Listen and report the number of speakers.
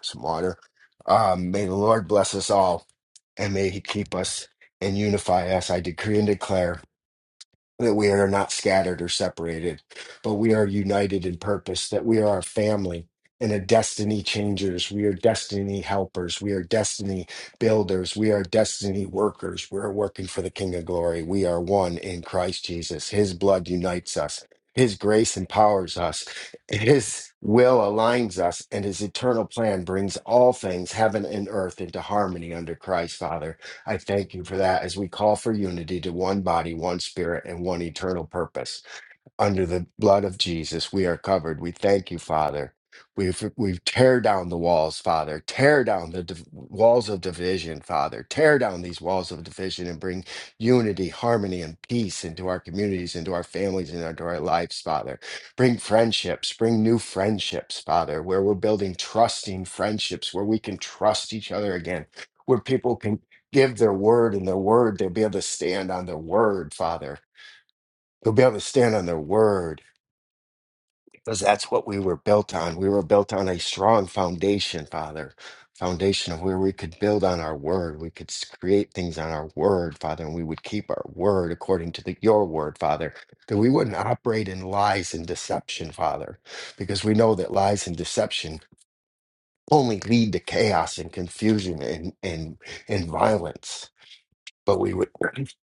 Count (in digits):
1